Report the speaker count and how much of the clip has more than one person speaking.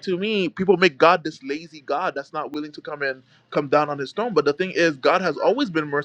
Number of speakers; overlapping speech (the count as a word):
one, no overlap